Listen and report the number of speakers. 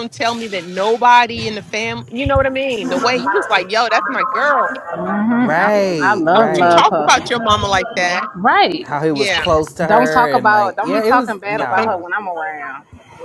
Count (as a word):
three